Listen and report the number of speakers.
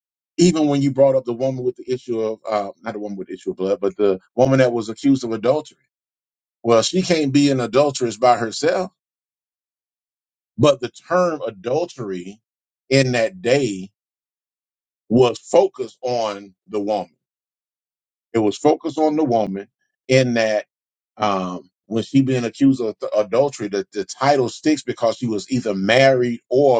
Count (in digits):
1